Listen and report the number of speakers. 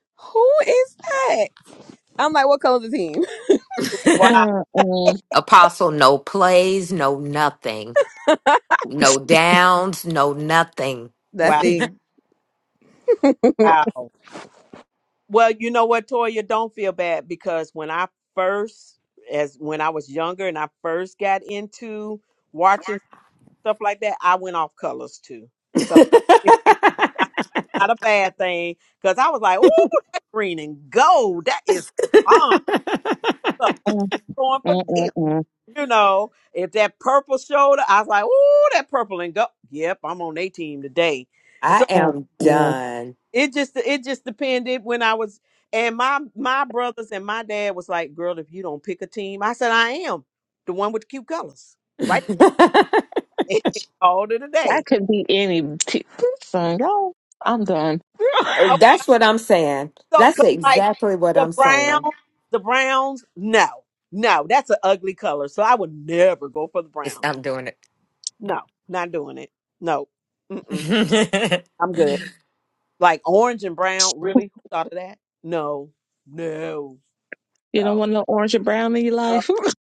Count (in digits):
4